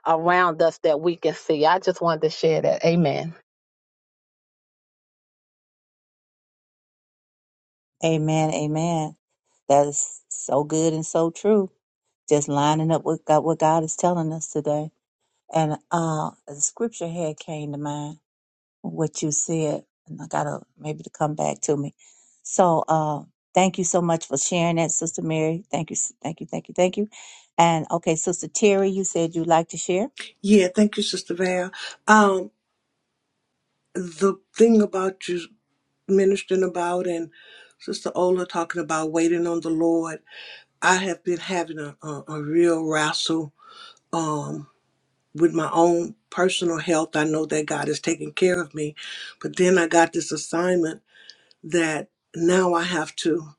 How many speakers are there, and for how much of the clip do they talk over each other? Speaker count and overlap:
3, no overlap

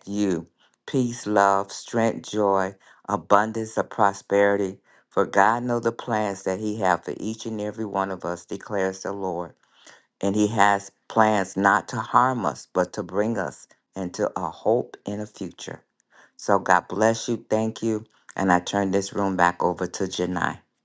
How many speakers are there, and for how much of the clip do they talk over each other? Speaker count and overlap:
1, no overlap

